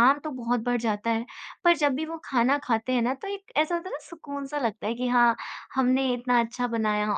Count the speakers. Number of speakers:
1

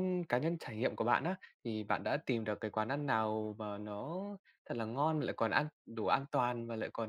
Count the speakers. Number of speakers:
1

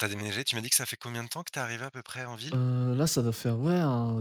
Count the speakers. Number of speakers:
2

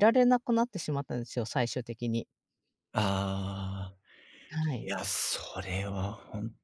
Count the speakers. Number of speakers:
2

